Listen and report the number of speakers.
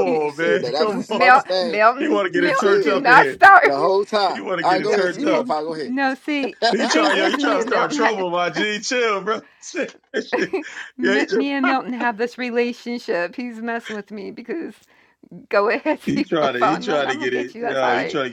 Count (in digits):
3